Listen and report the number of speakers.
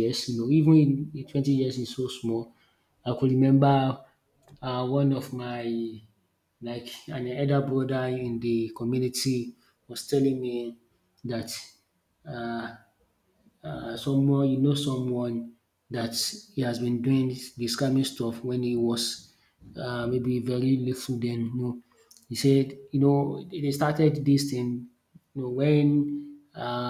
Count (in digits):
1